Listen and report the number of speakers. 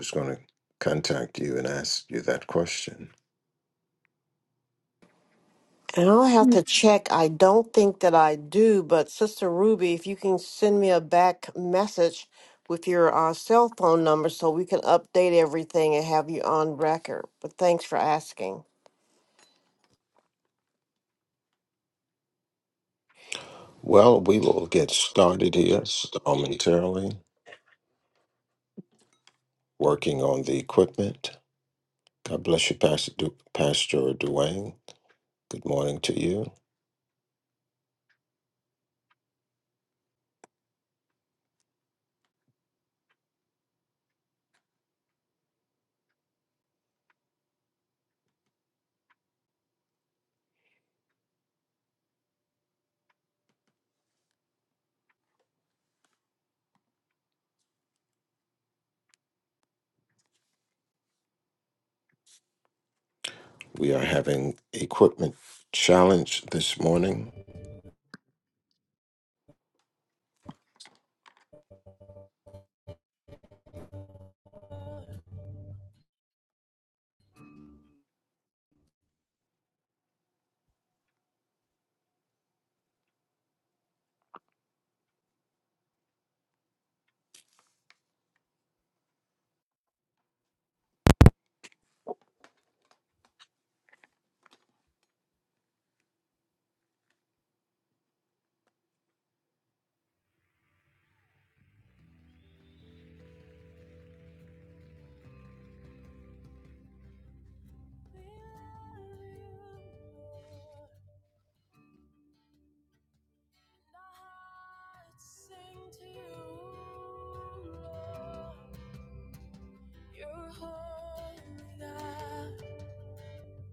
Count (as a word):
three